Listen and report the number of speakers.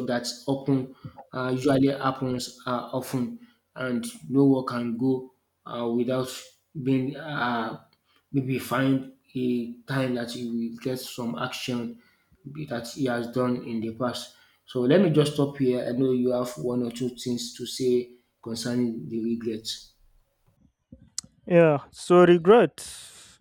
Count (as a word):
two